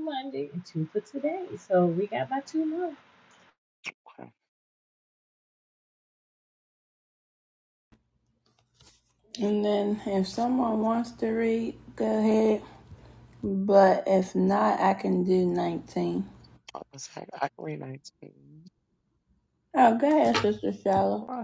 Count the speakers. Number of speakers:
3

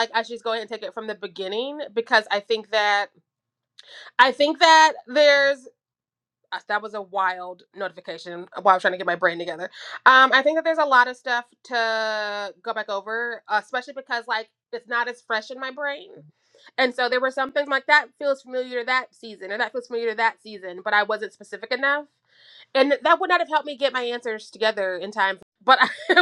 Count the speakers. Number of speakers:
1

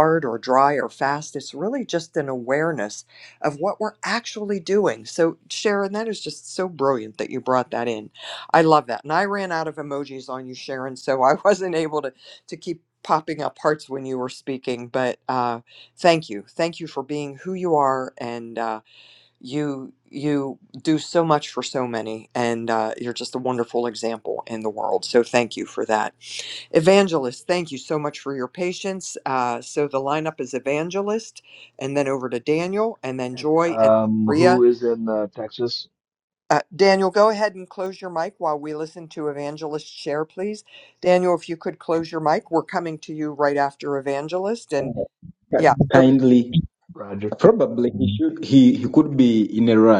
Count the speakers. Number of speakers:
3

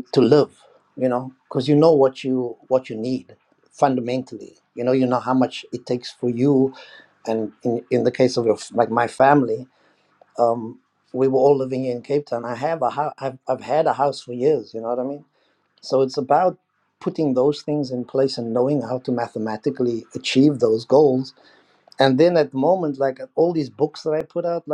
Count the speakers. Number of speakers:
1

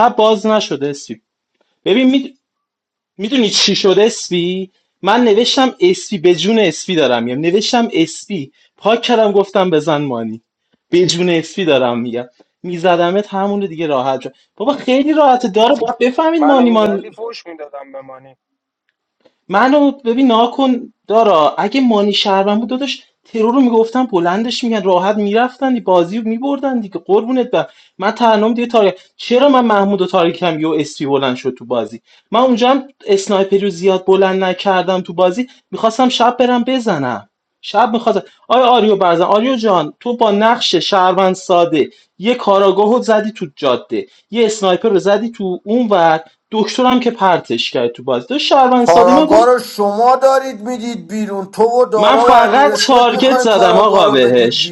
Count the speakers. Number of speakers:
3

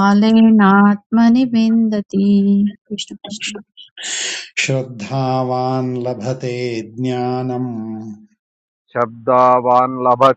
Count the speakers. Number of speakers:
3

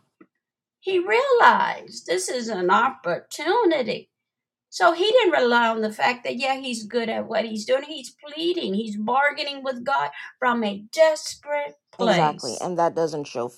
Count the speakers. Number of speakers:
2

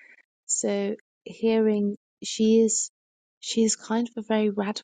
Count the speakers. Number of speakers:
1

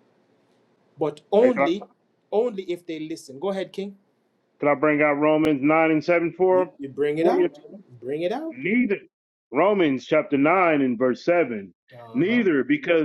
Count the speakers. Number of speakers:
2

